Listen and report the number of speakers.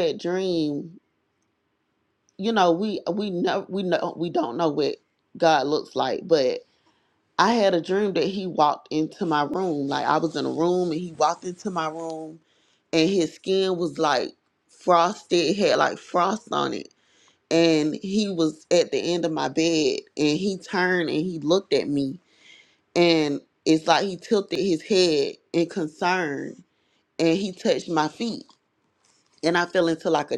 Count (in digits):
1